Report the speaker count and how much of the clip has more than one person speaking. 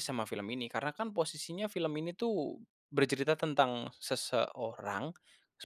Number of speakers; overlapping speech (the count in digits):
1, no overlap